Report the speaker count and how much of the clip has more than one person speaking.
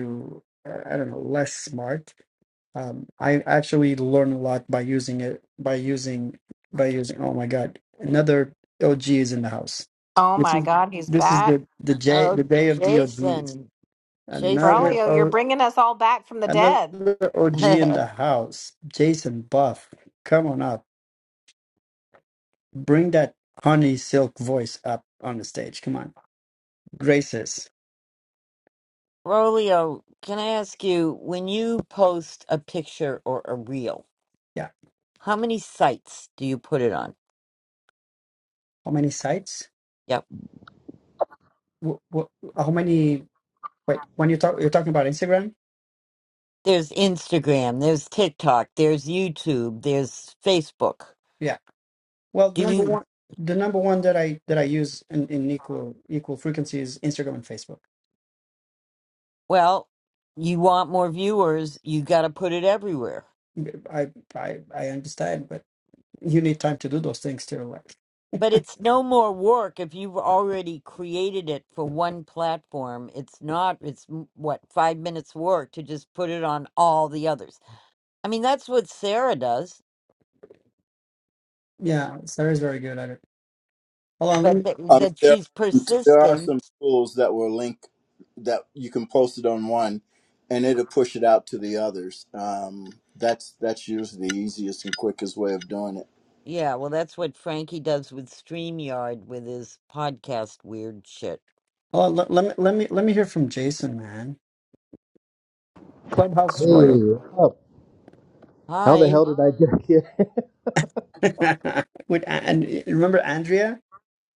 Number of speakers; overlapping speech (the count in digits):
5, about 5%